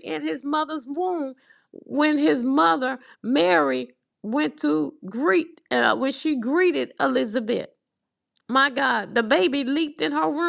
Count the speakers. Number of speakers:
1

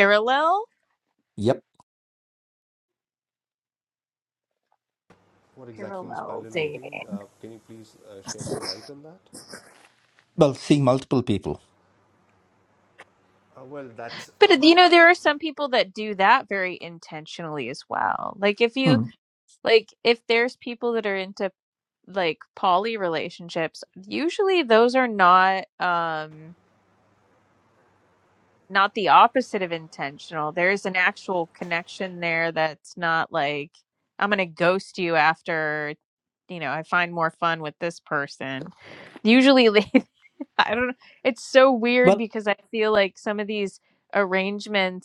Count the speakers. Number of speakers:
3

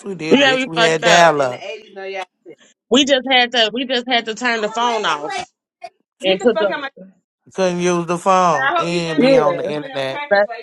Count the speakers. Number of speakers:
3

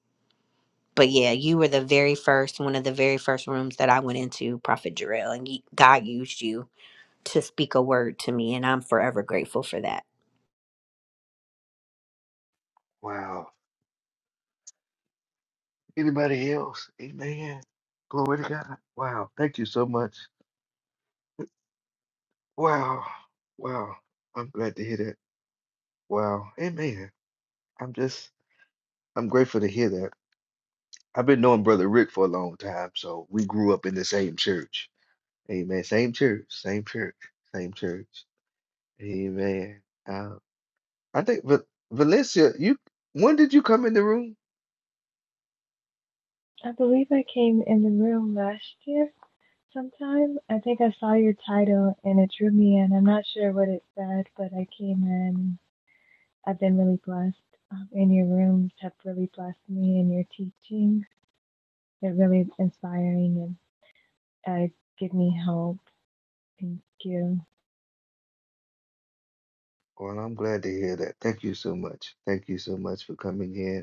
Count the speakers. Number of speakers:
3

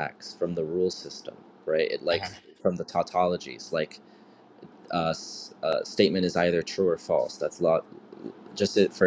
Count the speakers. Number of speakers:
1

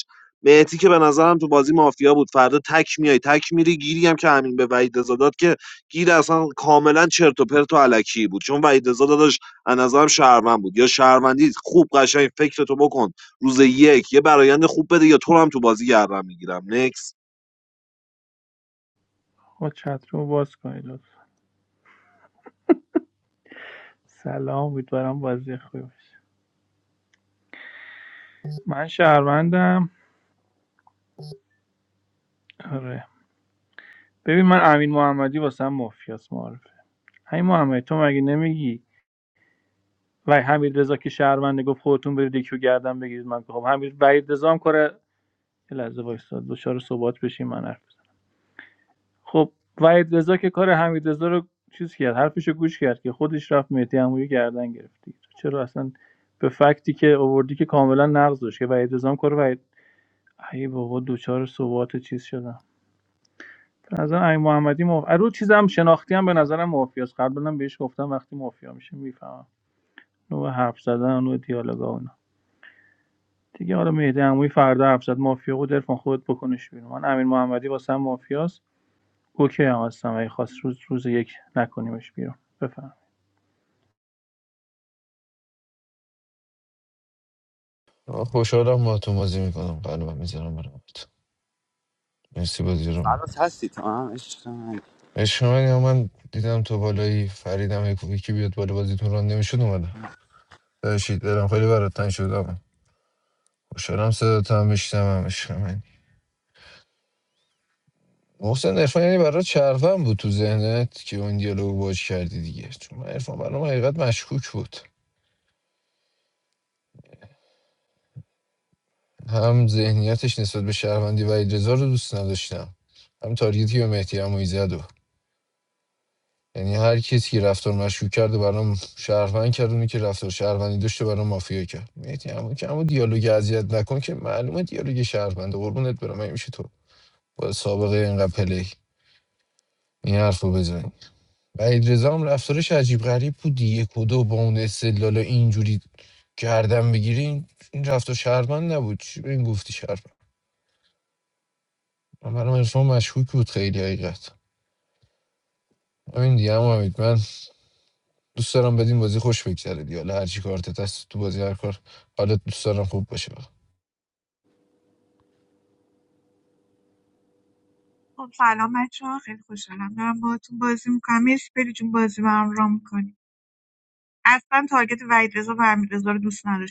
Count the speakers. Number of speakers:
5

